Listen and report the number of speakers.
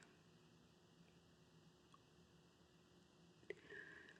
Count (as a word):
zero